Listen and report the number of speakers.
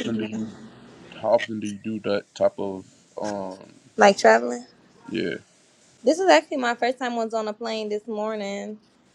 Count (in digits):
2